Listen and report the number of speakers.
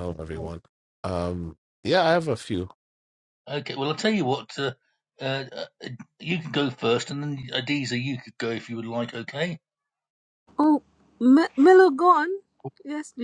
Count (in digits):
3